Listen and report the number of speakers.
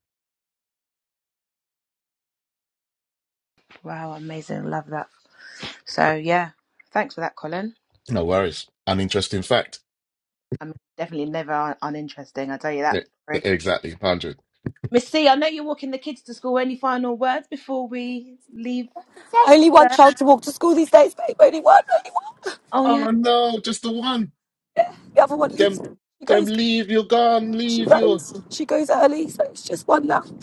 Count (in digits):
3